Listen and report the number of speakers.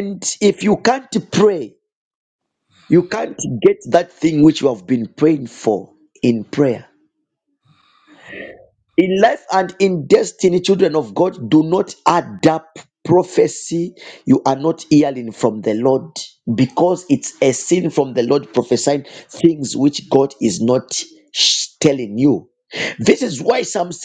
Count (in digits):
1